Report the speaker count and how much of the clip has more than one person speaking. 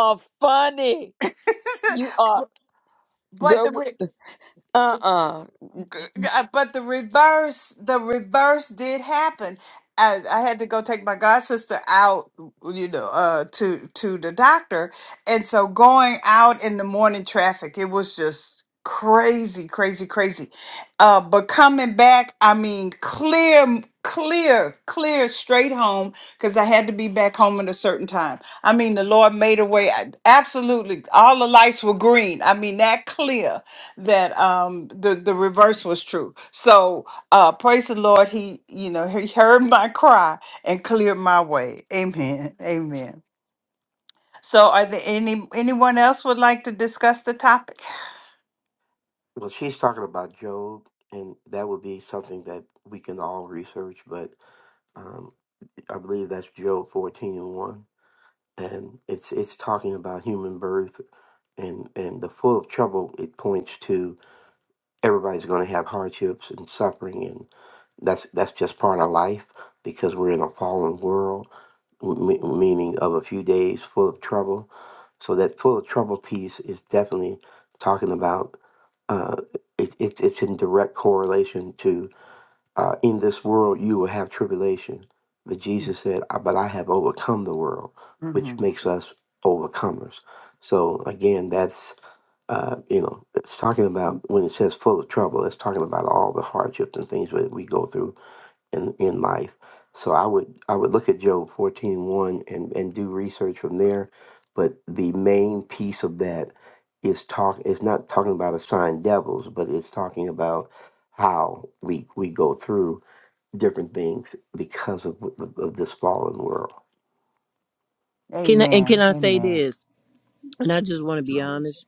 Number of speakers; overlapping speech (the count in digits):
4, about 1%